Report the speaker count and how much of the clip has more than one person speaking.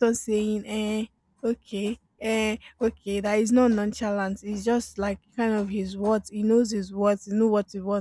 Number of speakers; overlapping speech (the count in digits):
1, no overlap